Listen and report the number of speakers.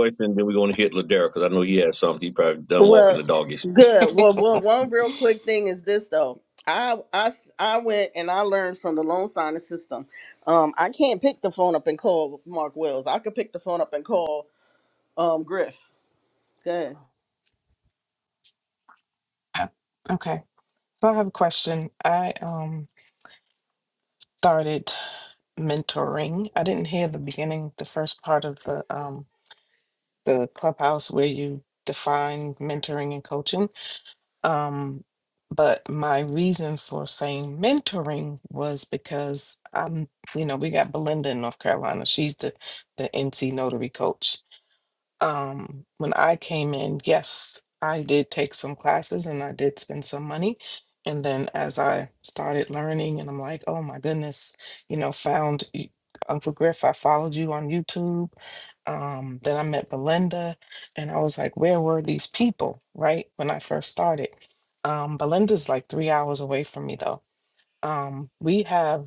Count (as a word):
three